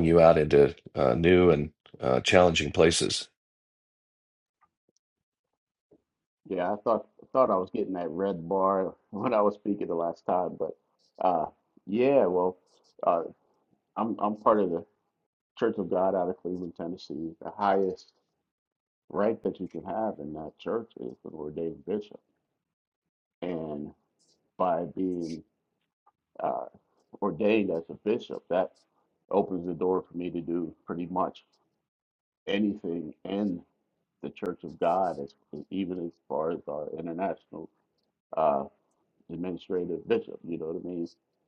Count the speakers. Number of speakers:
2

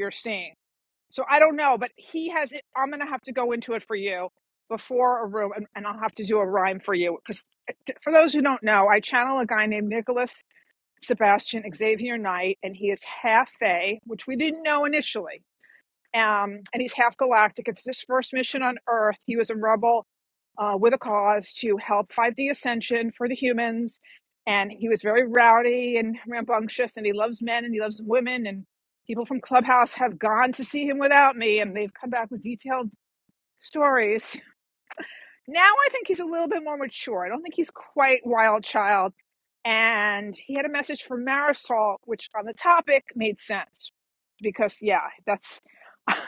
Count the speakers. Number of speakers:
1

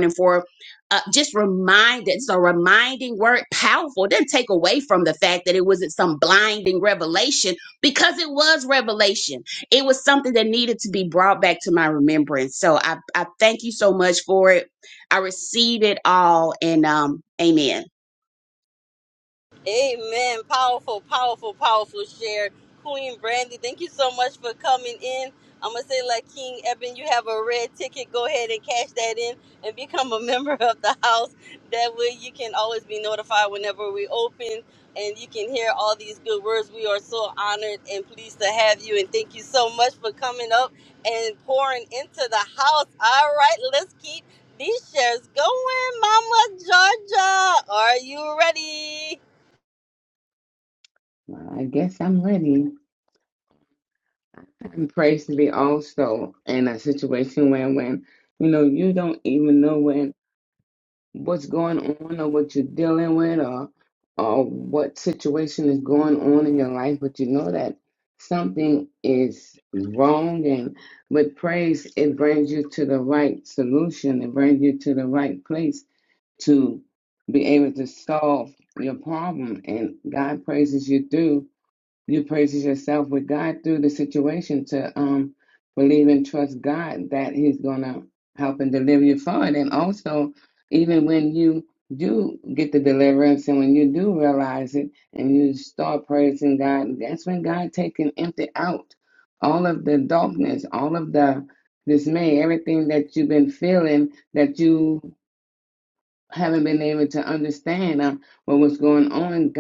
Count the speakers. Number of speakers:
3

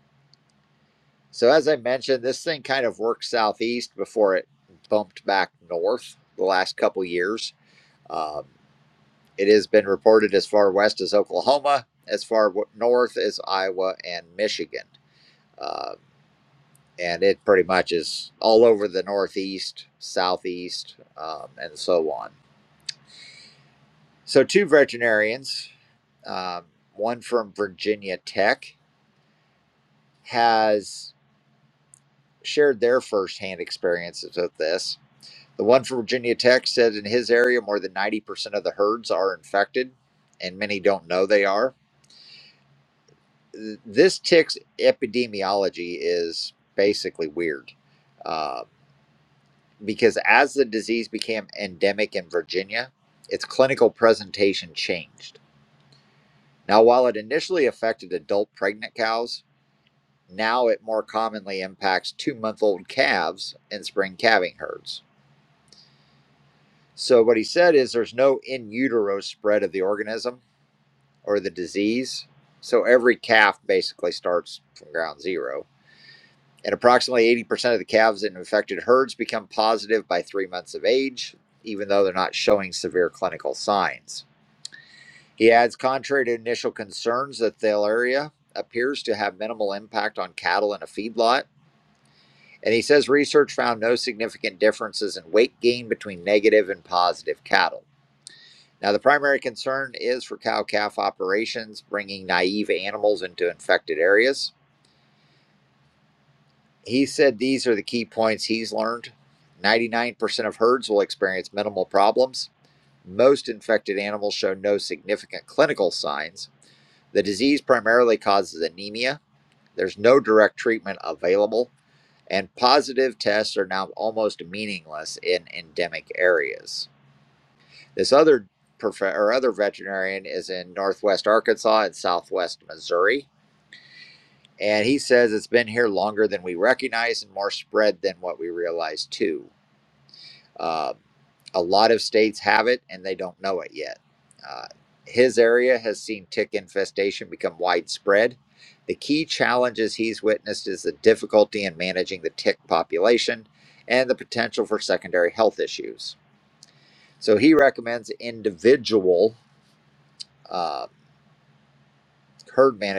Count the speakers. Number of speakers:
1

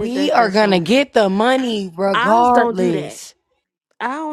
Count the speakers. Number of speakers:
2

